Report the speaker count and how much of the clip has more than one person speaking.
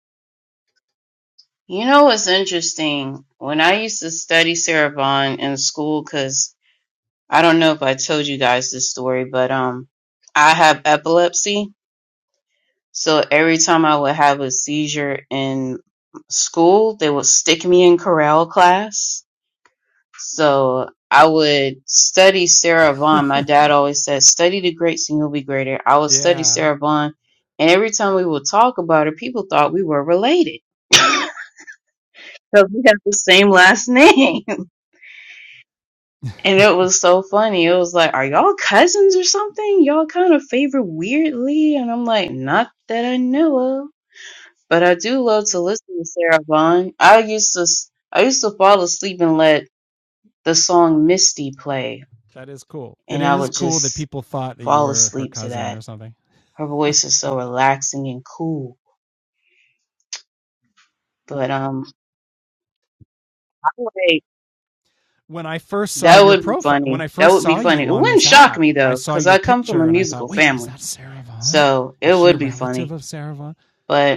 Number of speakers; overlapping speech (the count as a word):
two, about 11%